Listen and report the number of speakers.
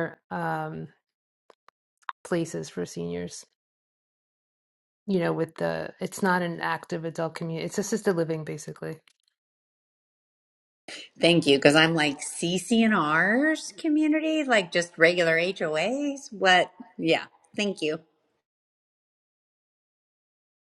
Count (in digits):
2